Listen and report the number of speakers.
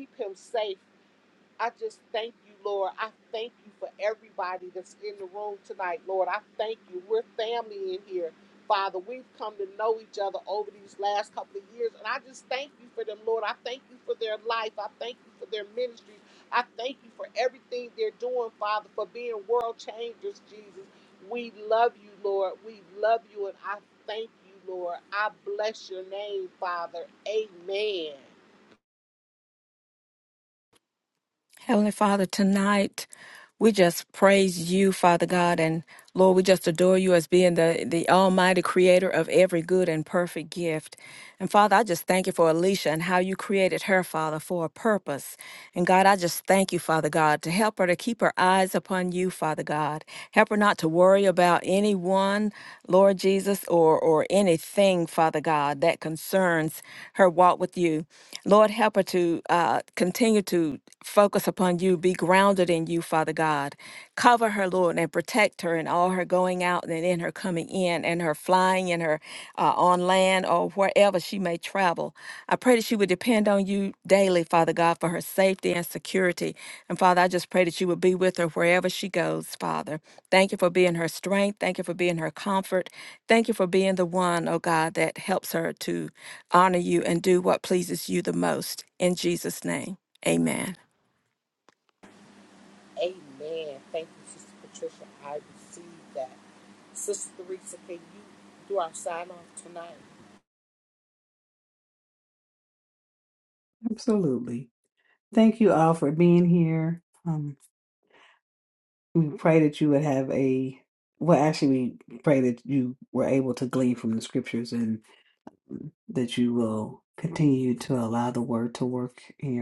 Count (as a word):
three